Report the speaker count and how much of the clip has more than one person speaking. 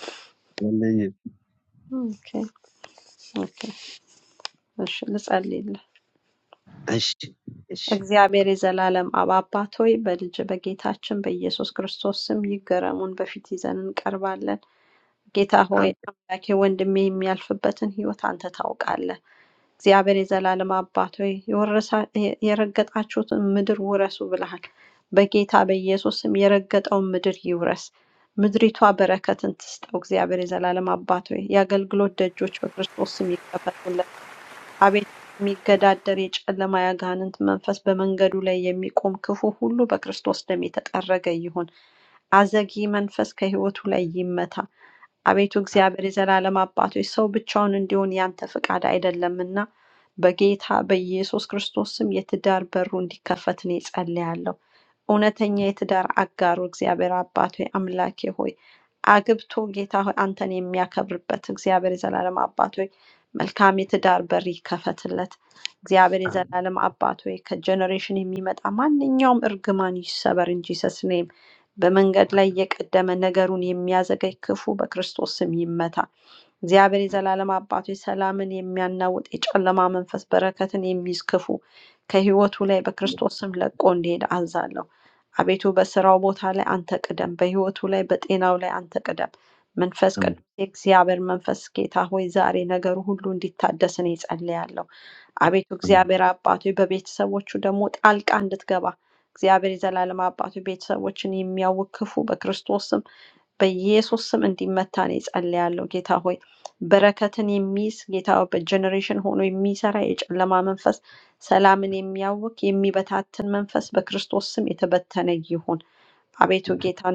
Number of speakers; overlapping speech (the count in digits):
2, about 1%